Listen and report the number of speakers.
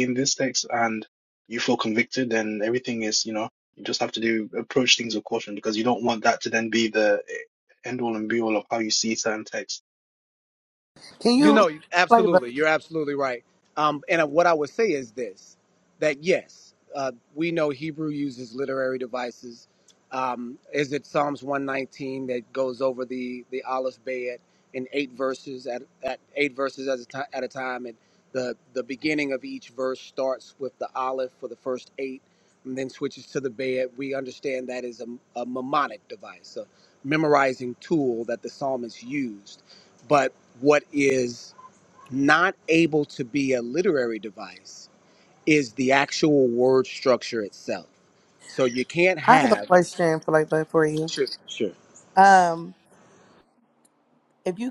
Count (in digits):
3